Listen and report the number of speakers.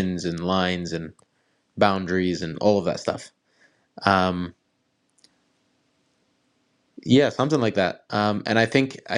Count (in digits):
1